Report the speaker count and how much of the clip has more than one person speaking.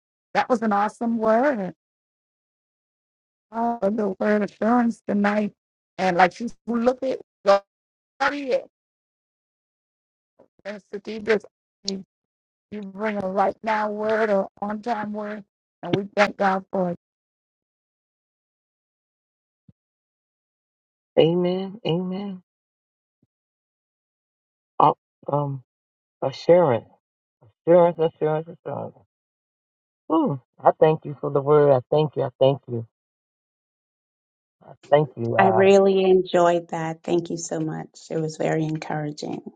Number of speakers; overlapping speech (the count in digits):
3, about 1%